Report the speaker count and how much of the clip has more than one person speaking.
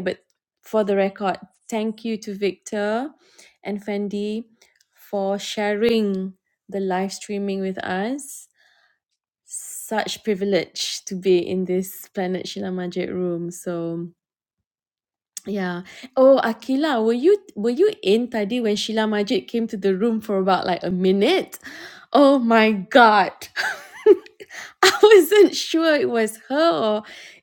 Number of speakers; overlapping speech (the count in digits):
1, no overlap